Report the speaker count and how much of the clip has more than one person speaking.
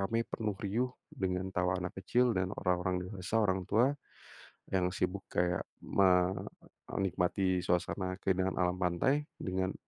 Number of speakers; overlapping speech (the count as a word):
one, no overlap